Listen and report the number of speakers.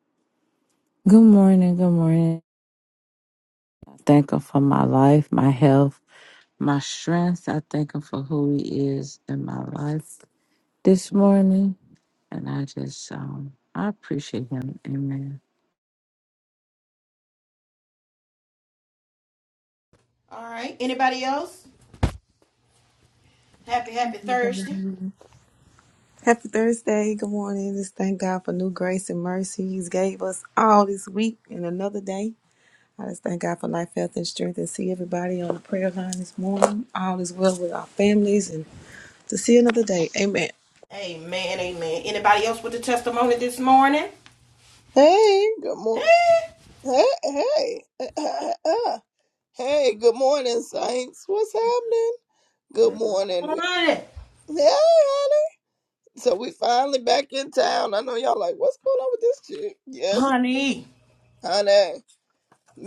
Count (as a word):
four